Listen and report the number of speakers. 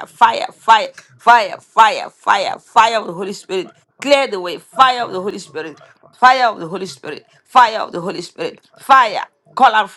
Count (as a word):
one